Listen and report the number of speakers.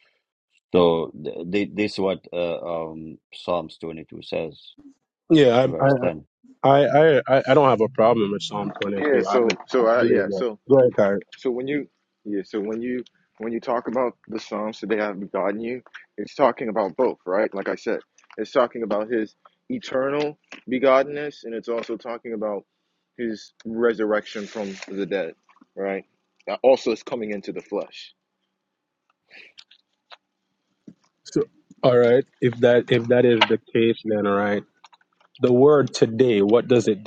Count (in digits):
3